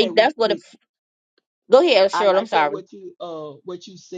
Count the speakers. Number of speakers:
2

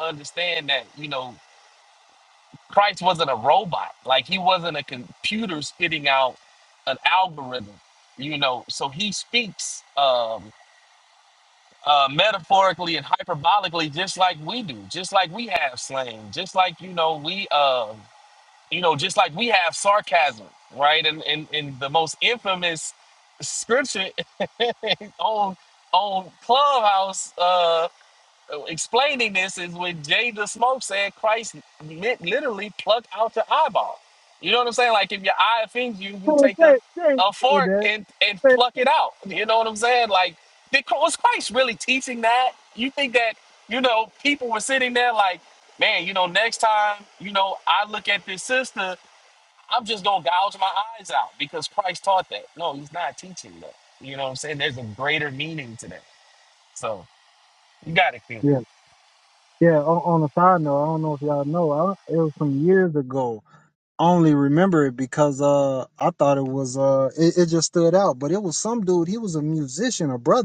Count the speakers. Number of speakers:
2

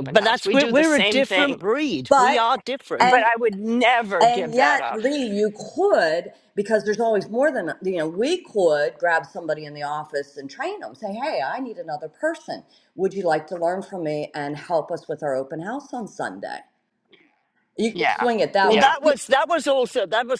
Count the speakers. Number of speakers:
3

